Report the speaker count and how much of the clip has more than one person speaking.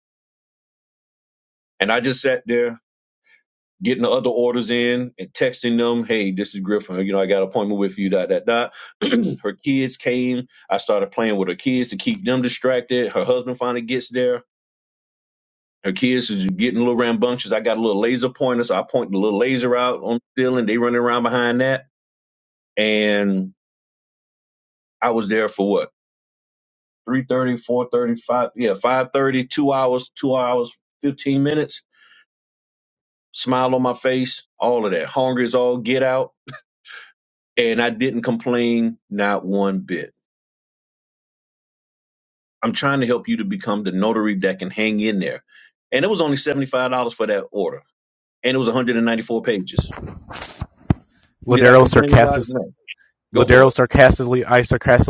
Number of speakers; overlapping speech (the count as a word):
two, about 2%